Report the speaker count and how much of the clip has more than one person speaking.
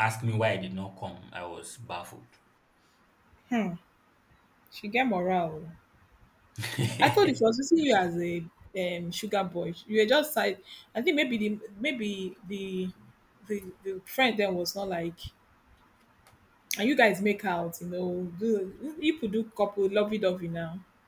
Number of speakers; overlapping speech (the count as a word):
two, no overlap